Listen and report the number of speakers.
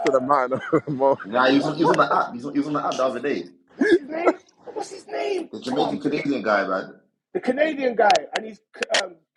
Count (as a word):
three